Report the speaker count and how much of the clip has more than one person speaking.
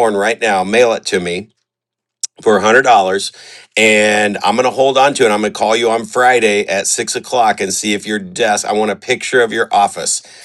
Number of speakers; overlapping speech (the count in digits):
1, no overlap